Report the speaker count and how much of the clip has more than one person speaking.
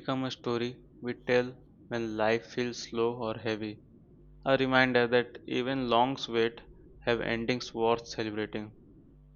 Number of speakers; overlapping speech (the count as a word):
one, no overlap